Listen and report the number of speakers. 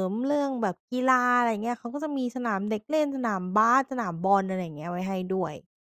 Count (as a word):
one